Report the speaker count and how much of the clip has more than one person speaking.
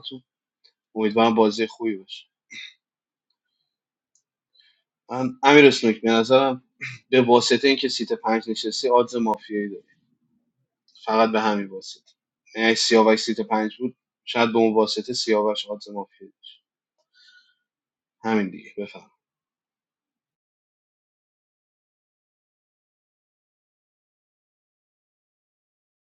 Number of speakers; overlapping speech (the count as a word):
one, no overlap